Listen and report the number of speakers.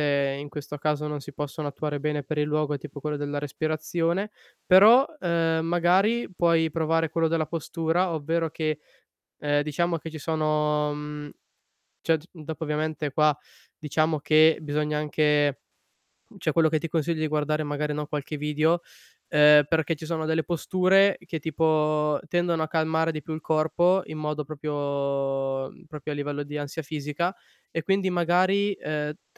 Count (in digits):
1